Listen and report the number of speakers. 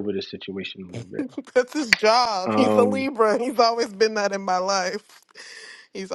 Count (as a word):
two